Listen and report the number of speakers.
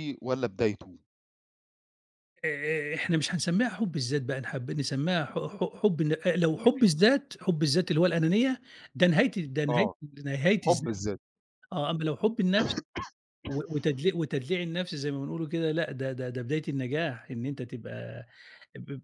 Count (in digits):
2